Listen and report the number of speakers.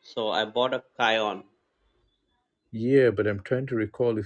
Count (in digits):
2